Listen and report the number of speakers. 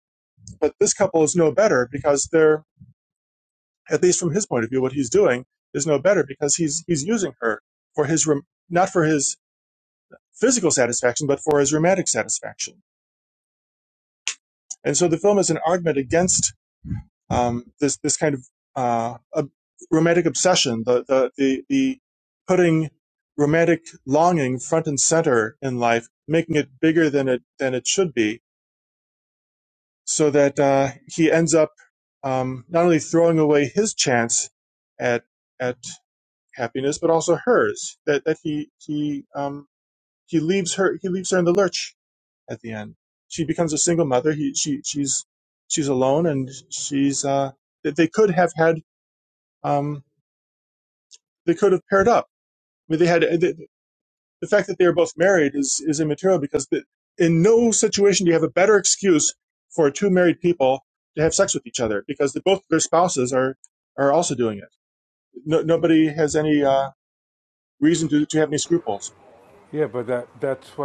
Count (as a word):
two